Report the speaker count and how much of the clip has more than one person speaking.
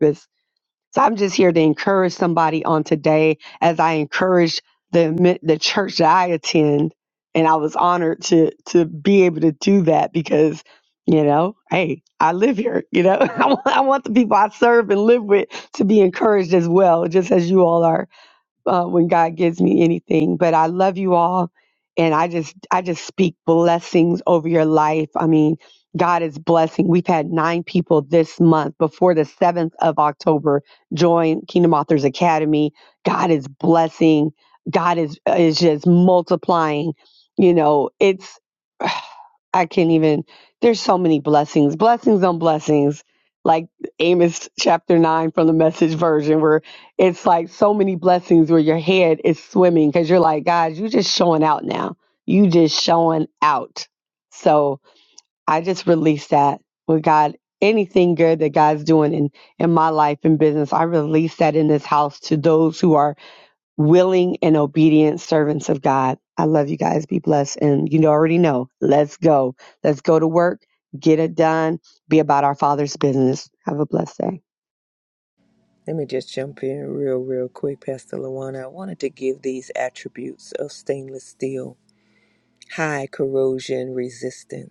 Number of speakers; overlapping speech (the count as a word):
two, no overlap